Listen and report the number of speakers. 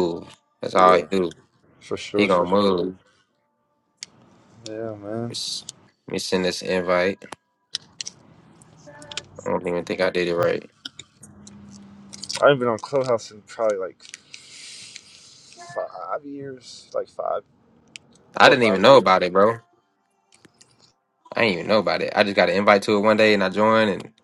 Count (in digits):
2